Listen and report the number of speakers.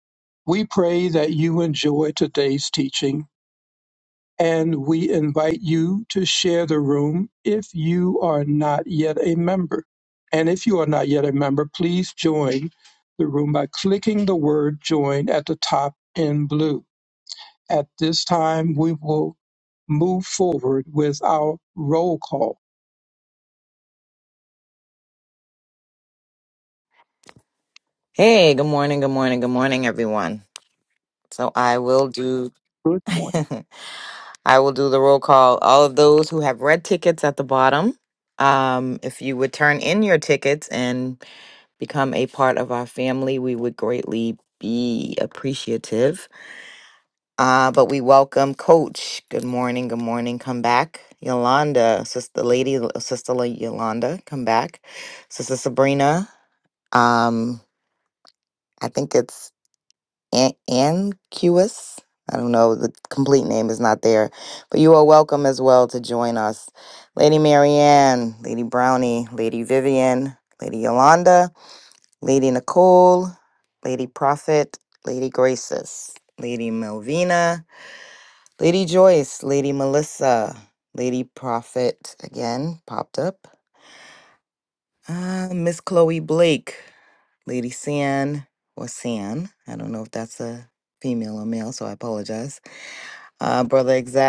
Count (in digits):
2